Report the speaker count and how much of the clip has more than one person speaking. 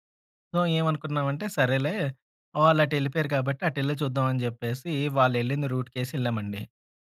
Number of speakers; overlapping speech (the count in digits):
1, no overlap